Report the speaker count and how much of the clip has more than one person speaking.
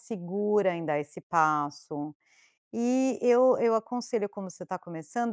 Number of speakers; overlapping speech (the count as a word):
one, no overlap